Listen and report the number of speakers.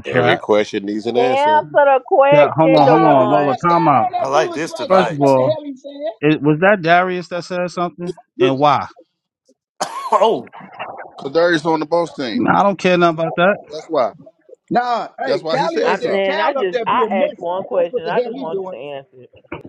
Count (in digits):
6